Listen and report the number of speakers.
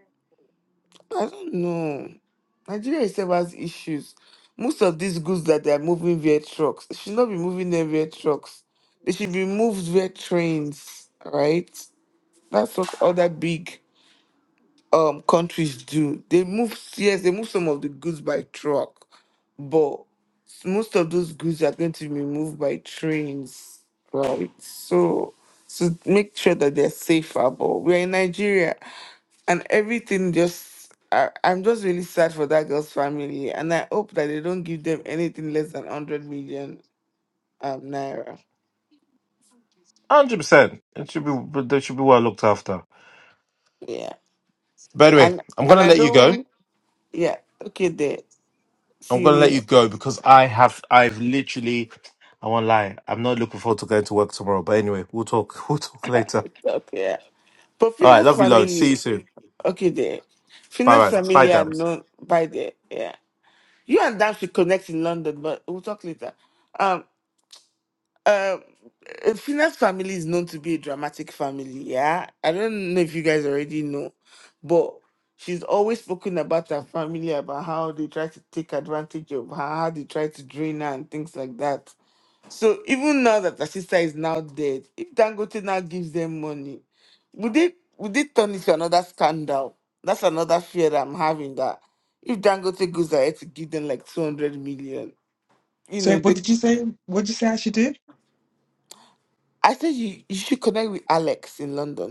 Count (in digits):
3